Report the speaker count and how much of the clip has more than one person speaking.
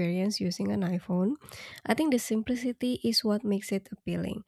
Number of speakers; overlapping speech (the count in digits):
1, no overlap